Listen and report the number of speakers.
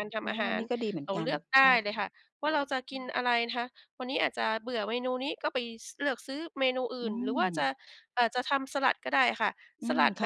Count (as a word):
two